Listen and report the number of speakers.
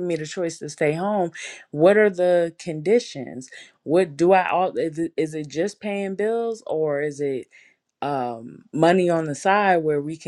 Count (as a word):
one